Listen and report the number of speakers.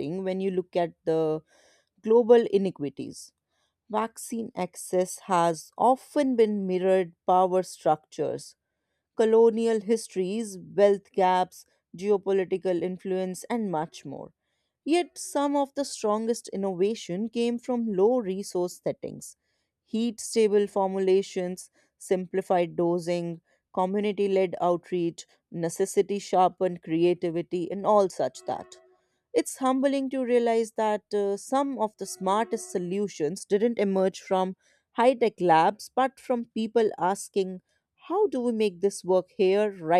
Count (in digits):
1